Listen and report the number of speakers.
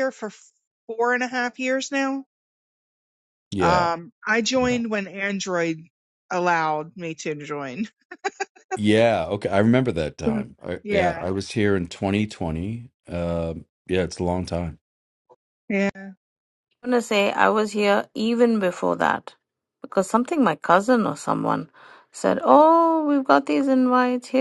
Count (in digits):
3